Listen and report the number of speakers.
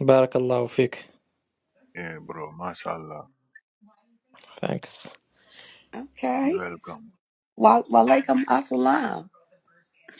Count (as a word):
three